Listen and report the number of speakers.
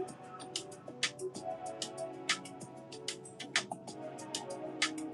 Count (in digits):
0